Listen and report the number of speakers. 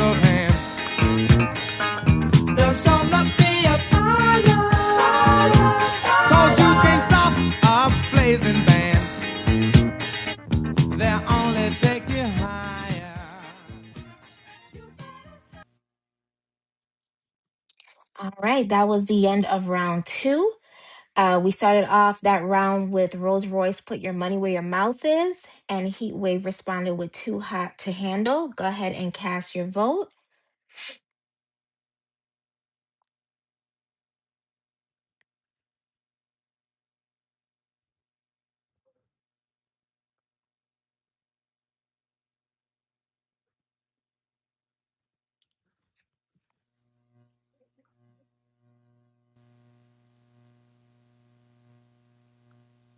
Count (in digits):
2